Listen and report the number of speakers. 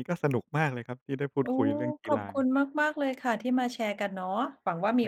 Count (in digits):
2